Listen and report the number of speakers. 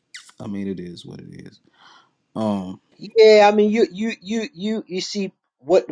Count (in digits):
2